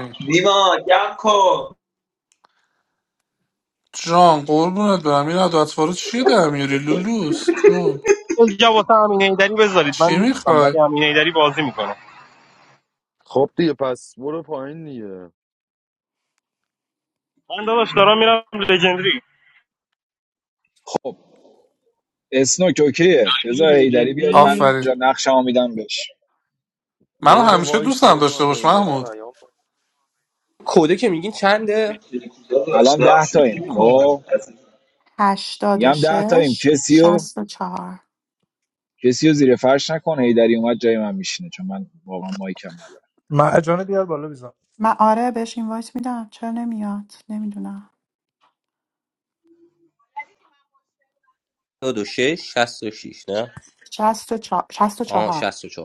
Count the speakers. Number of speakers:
8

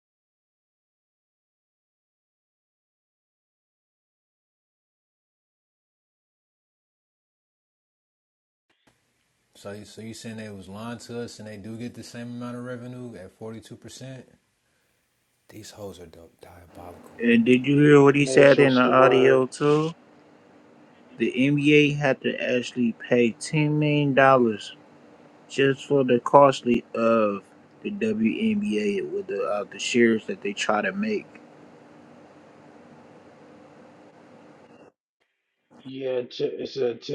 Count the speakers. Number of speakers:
3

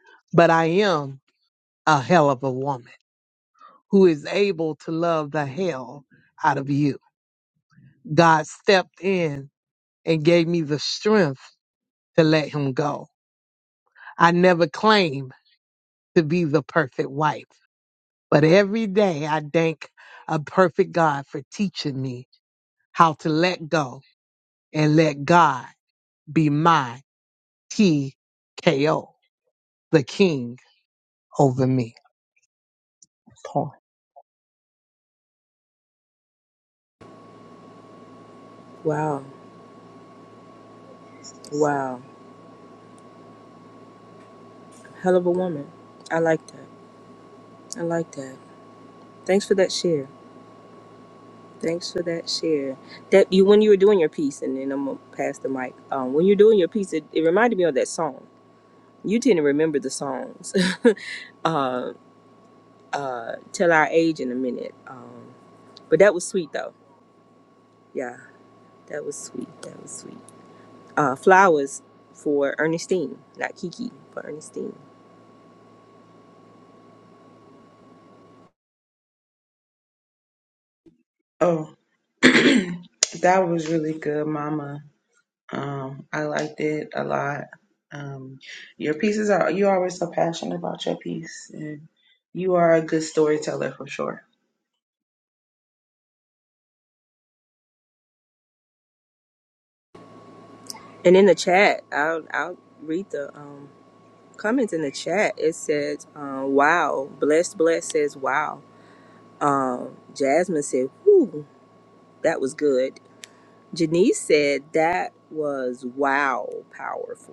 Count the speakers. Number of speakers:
3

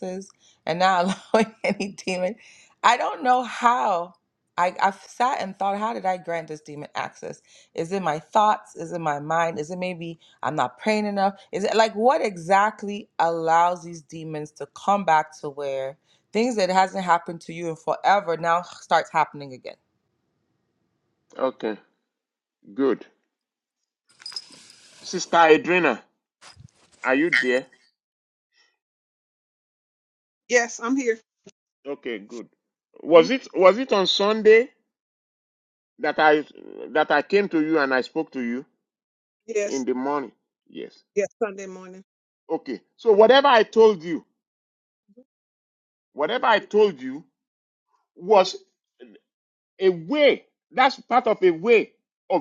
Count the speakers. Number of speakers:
3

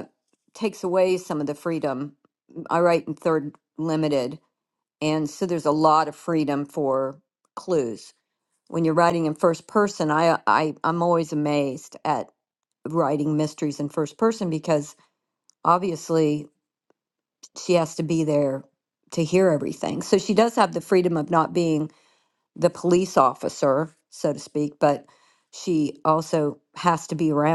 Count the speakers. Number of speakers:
1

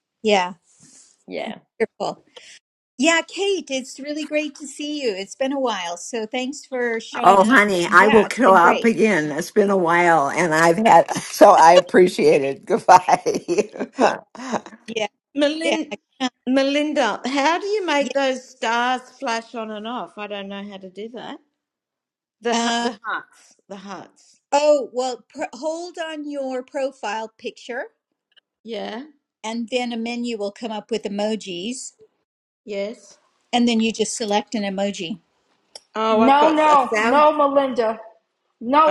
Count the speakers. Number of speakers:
4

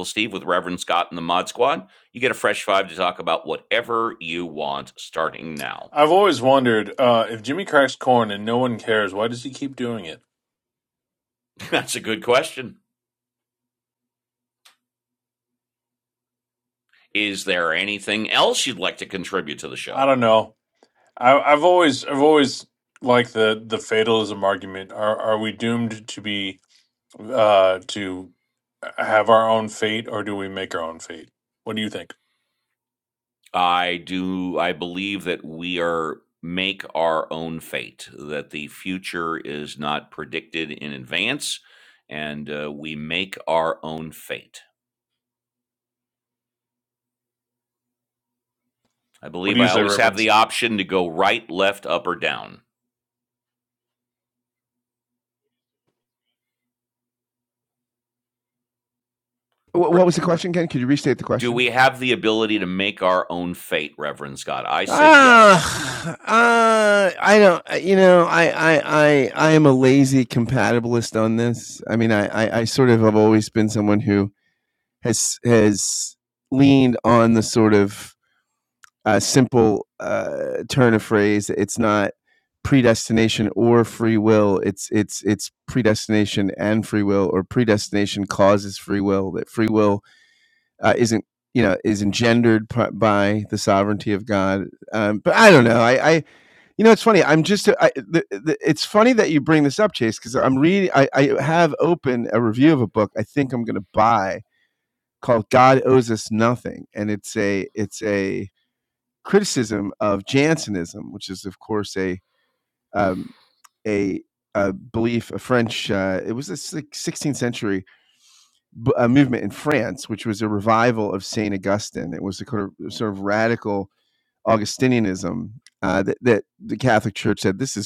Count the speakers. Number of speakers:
3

